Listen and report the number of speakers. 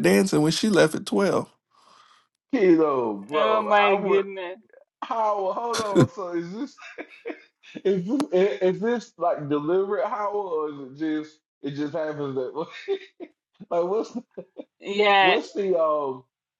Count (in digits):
3